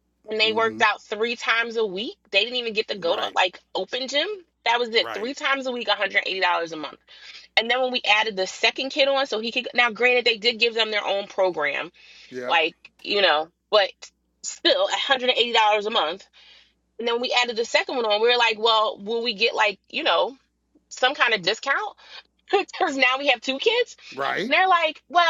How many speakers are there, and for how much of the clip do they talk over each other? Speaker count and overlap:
two, about 5%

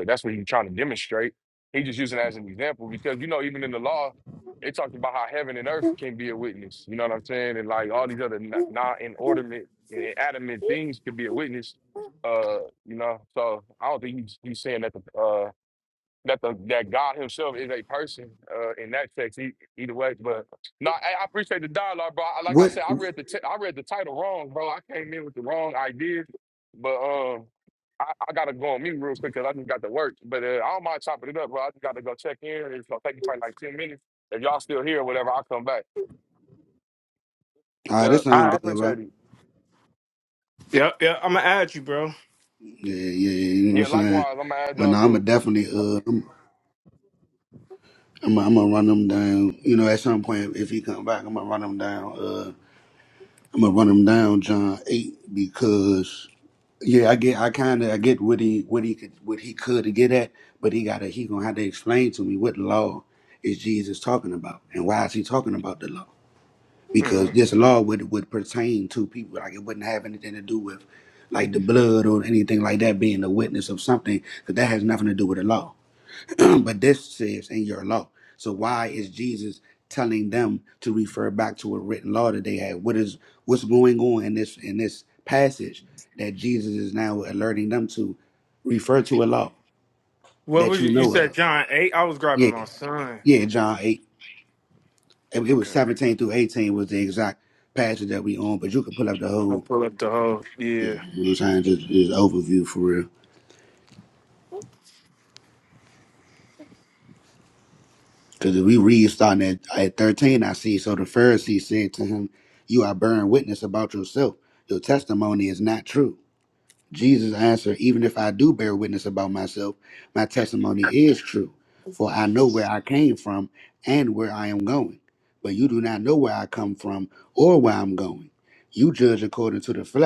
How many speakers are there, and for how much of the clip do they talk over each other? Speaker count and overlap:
three, about 4%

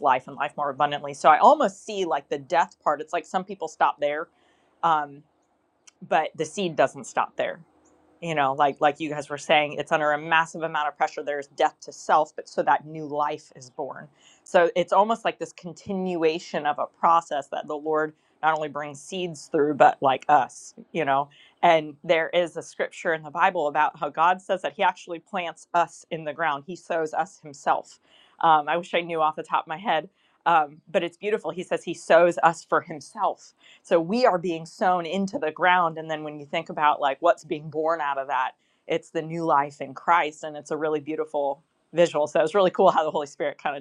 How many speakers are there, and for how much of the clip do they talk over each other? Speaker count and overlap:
one, no overlap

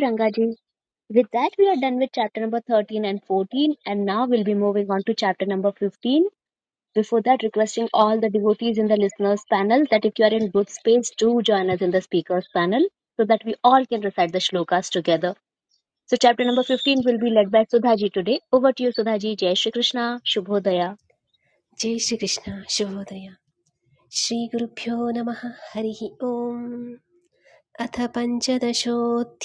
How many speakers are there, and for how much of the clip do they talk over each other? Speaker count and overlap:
two, no overlap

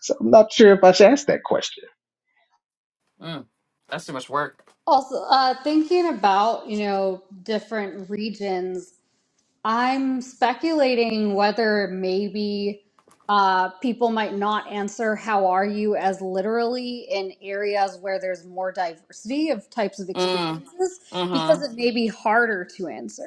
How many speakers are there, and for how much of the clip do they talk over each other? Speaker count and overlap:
three, about 3%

